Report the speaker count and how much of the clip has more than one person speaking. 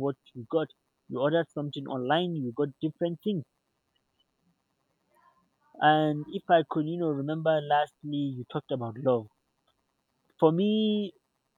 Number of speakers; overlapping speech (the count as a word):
one, no overlap